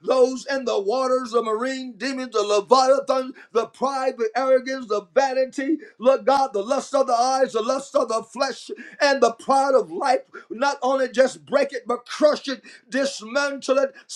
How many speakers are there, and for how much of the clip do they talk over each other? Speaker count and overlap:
one, no overlap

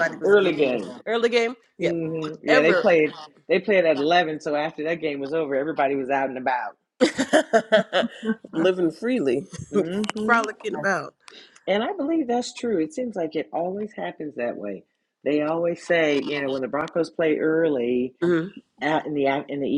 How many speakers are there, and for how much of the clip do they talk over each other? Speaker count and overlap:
two, about 9%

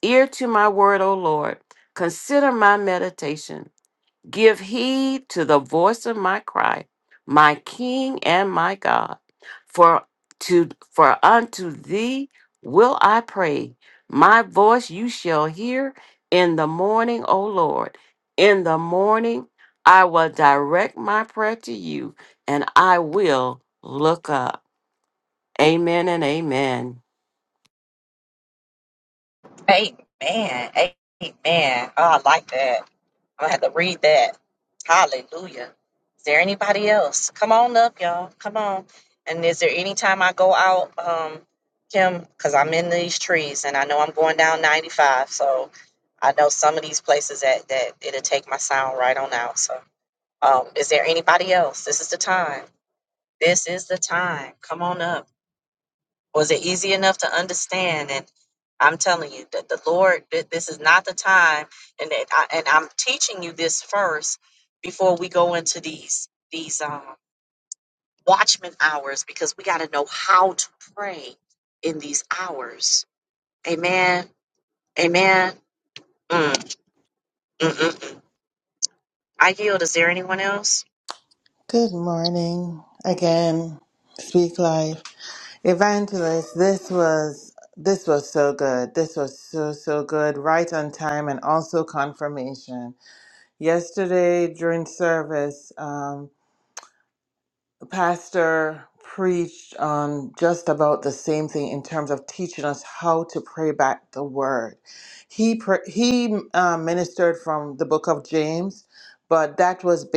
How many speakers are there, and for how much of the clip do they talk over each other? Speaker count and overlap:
three, no overlap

